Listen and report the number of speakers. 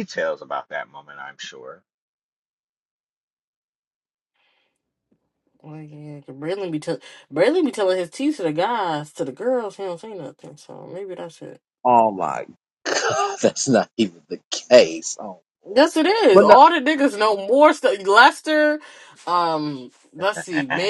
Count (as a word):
three